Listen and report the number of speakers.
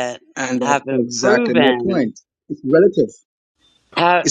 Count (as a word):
two